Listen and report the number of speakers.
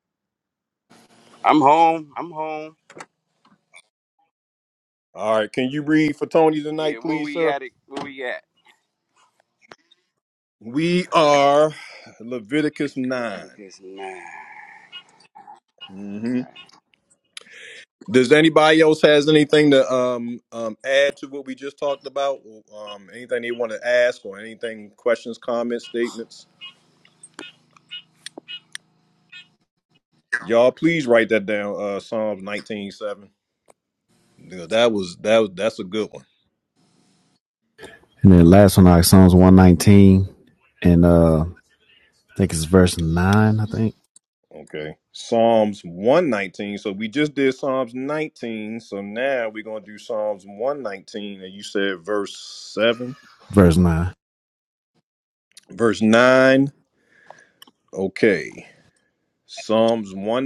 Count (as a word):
three